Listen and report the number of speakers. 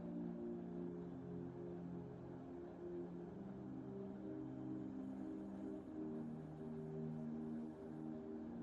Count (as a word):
zero